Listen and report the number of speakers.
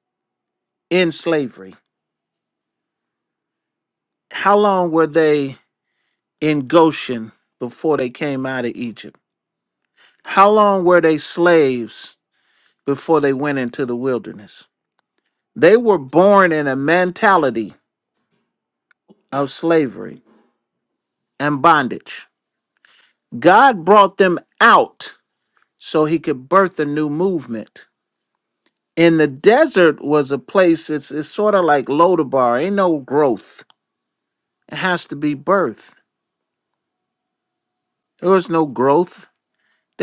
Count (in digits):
1